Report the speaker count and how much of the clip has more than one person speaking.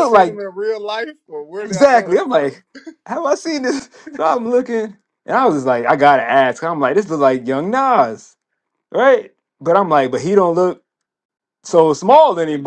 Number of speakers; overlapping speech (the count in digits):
2, about 10%